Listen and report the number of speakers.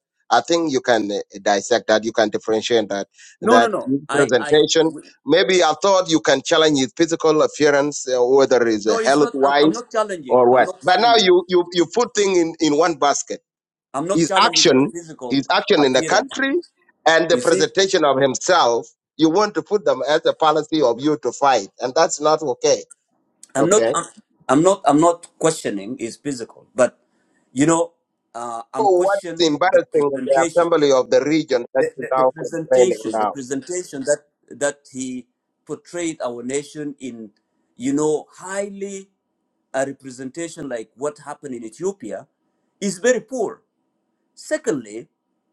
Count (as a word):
two